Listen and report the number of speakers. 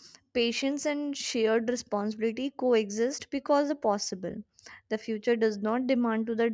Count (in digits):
1